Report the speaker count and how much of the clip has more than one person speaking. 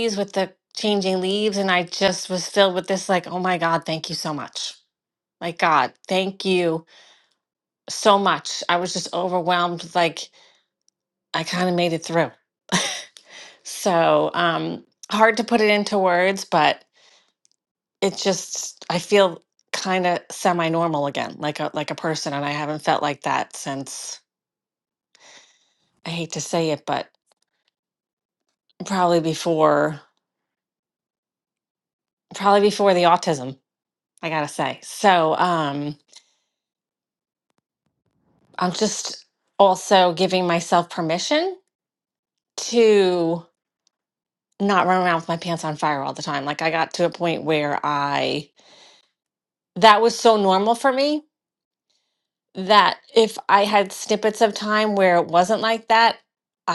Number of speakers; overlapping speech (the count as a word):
one, no overlap